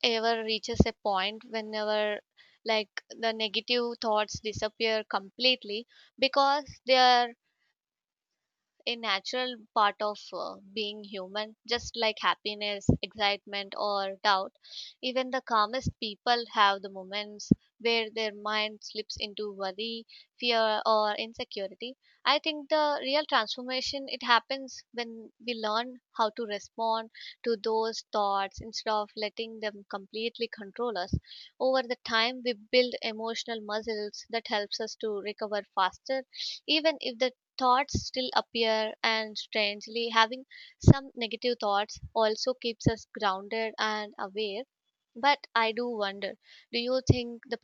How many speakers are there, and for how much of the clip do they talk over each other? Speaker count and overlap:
1, no overlap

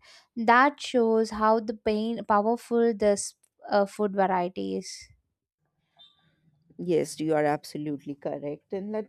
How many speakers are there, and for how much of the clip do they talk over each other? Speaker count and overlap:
2, no overlap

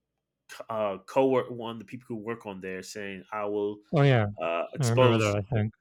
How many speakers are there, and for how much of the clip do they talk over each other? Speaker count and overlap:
2, about 9%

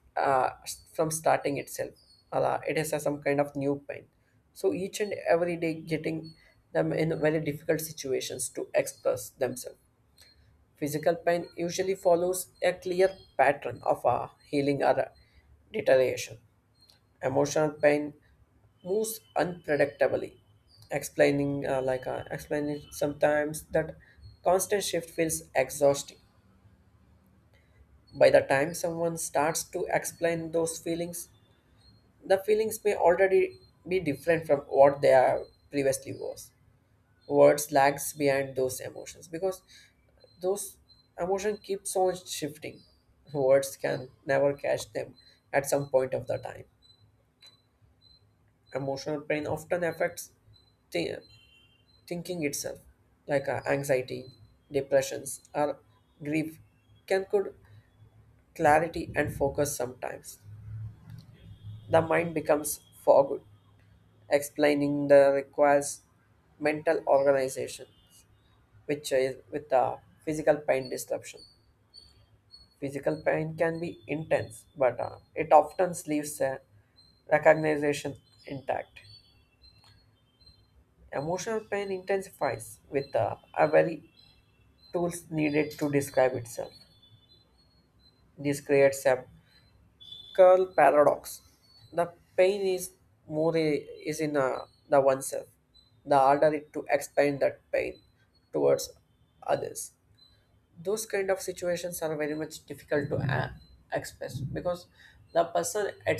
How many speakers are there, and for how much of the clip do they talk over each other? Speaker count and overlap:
1, no overlap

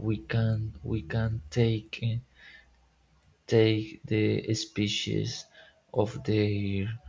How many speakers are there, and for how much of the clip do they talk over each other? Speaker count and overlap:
1, no overlap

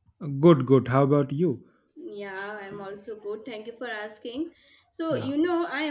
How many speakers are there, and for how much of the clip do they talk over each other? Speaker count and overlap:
2, about 3%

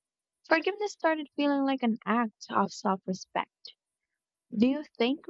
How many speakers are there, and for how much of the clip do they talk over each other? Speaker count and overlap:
1, no overlap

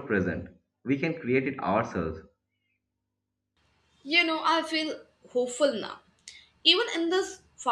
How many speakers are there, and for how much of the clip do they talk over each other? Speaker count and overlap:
2, no overlap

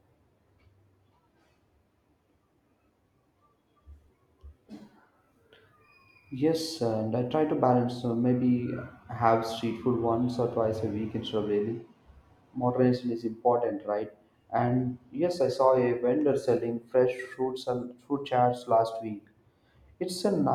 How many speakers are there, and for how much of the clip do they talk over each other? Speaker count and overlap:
1, no overlap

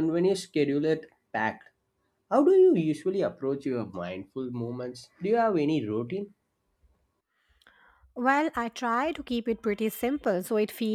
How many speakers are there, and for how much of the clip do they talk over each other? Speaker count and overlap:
2, no overlap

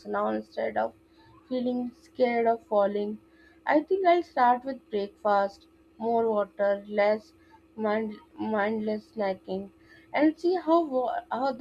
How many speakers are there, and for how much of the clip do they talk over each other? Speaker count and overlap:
1, no overlap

